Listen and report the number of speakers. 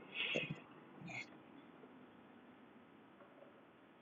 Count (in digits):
0